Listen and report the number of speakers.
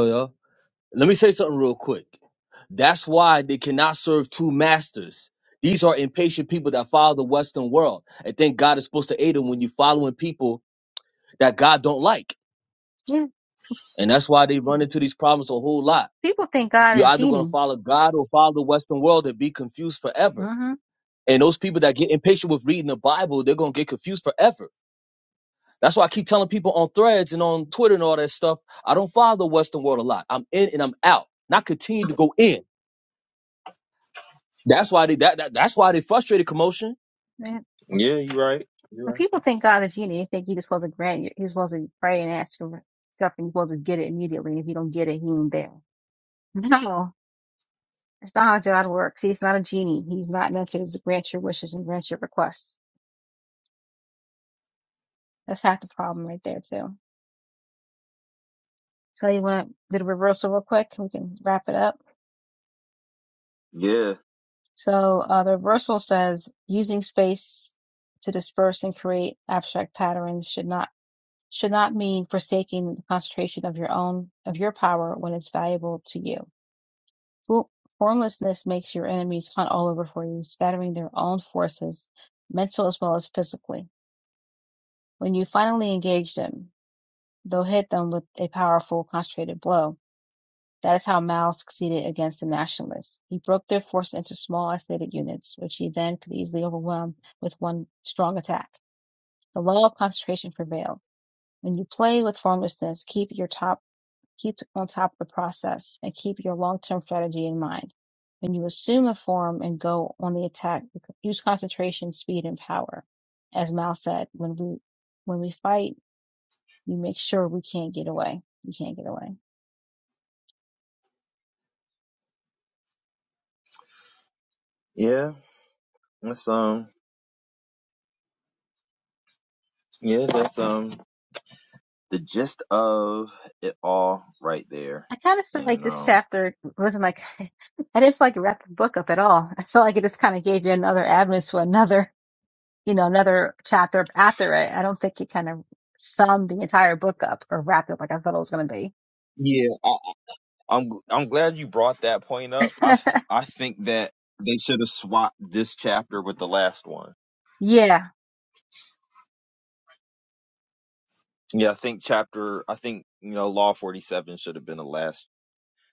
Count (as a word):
three